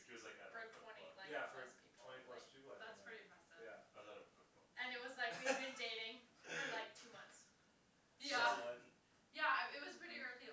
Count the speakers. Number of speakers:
4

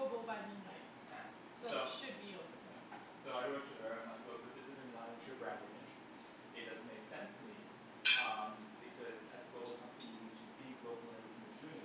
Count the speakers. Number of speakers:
2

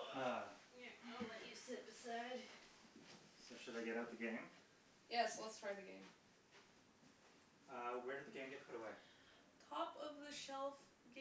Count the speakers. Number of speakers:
3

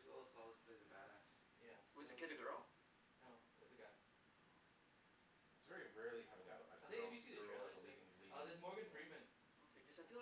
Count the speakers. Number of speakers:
4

